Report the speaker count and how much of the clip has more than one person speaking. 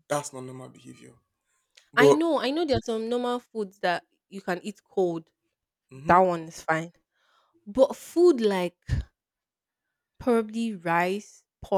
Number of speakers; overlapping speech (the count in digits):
2, about 4%